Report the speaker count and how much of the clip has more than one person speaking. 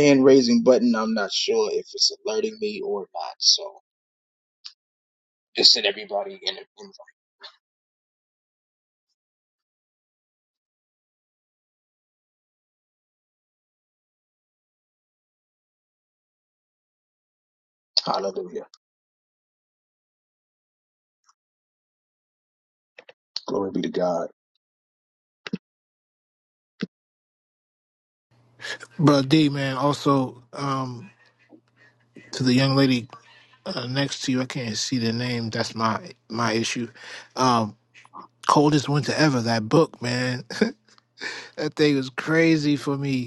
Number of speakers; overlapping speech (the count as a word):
two, no overlap